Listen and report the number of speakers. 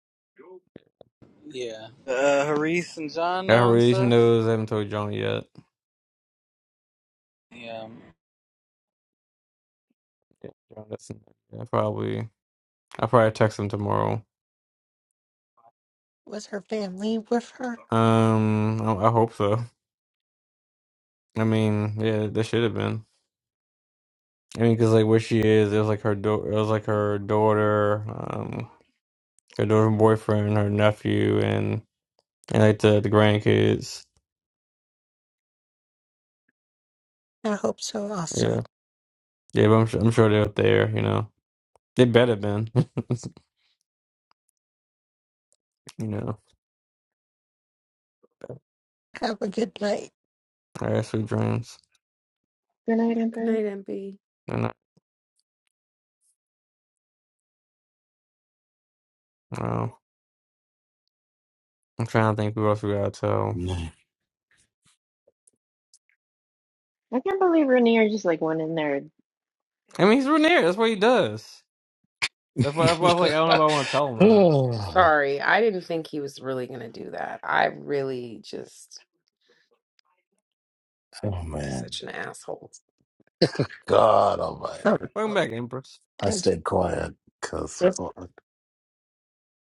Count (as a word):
six